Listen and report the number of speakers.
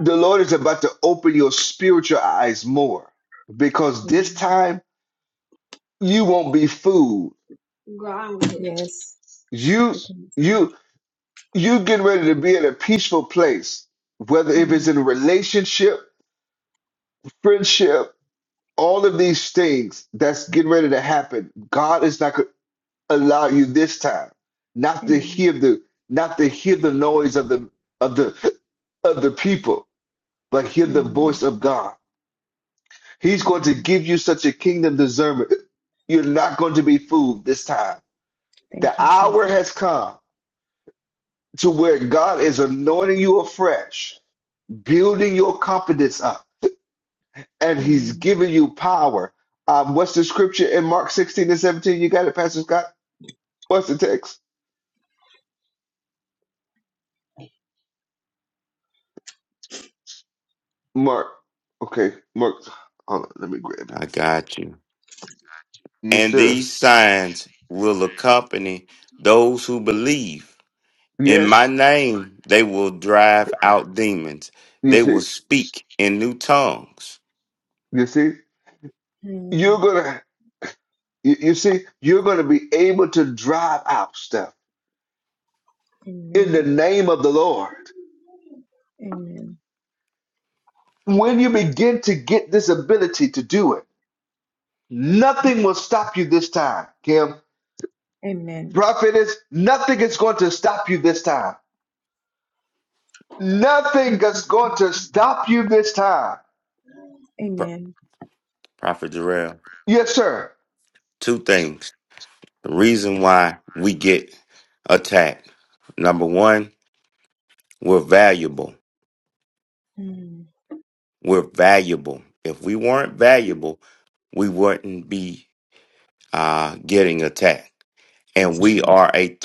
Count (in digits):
3